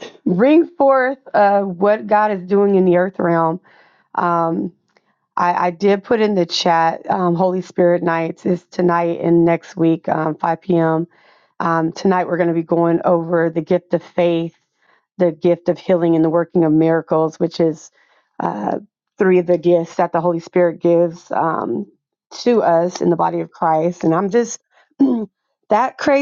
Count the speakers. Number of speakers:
one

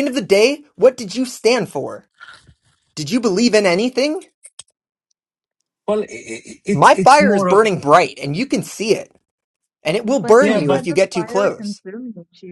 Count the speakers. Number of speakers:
three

